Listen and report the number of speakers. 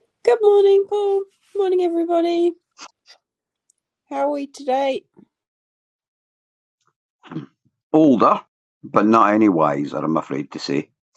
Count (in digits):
2